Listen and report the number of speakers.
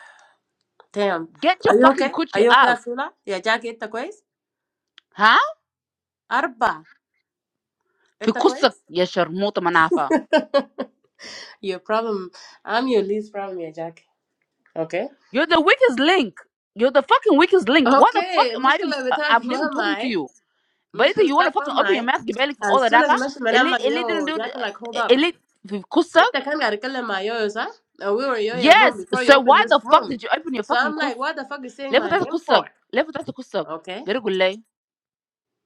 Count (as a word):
two